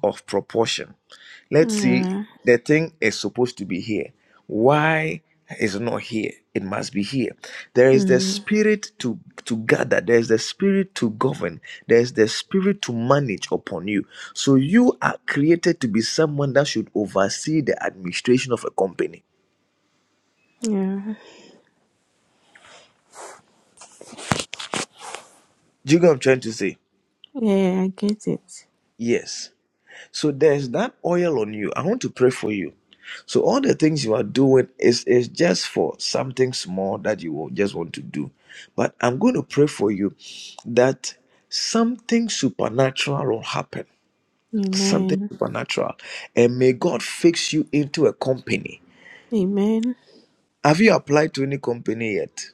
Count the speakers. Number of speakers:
two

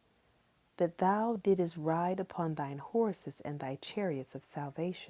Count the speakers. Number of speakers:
one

